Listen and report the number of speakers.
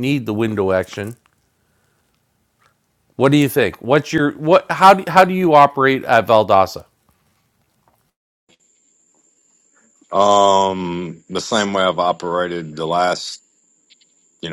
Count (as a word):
two